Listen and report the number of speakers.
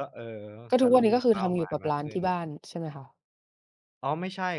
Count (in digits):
2